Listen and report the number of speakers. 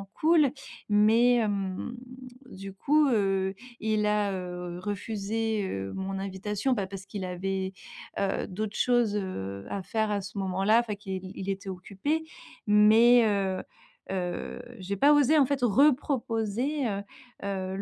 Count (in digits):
1